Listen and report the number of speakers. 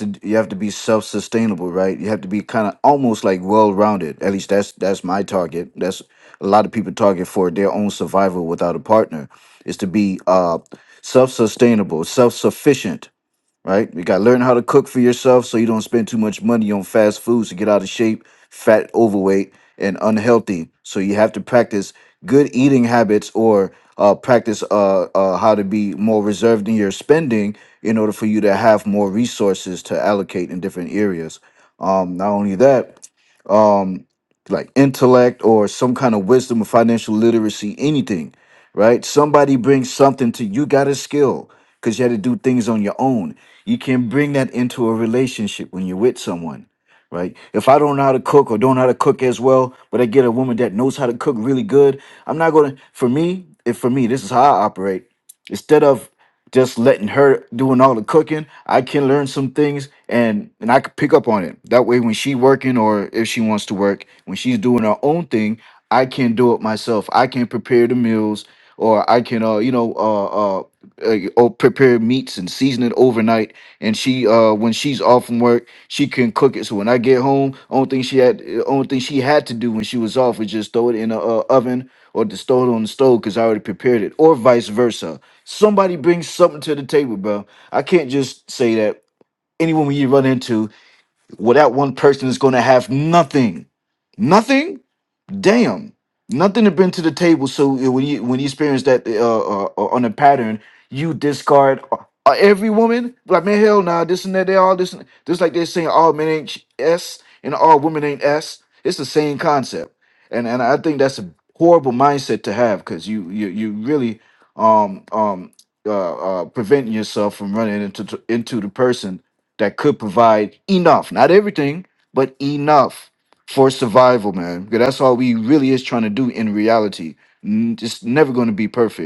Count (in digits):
1